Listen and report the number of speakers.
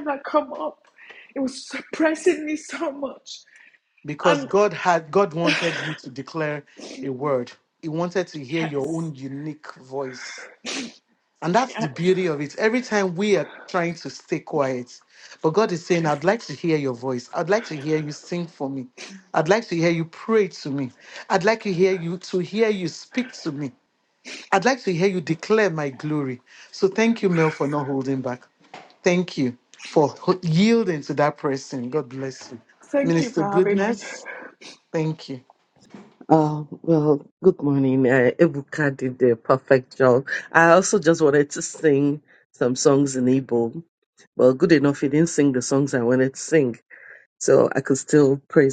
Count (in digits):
3